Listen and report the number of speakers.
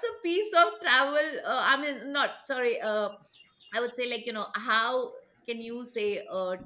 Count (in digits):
1